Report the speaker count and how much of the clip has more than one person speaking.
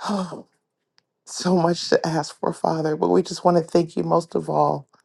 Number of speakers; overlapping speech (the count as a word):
one, no overlap